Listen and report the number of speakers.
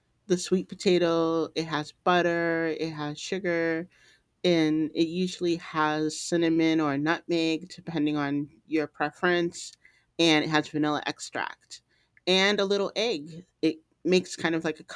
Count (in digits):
1